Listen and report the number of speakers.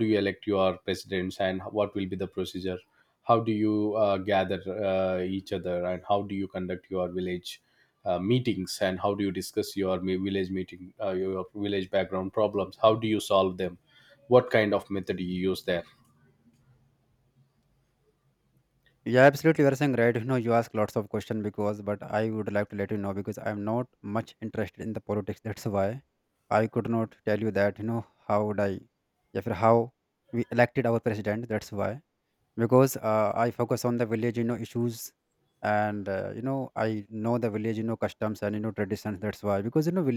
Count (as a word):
two